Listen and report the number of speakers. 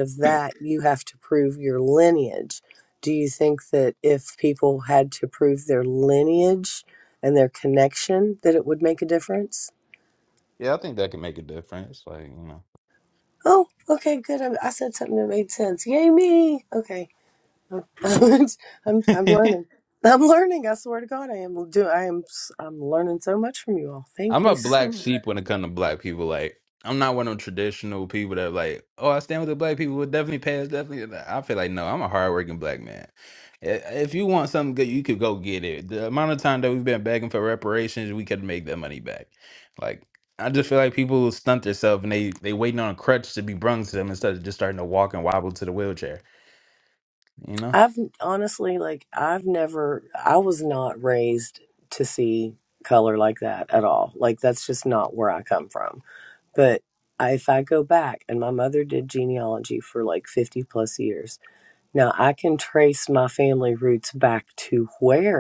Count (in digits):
2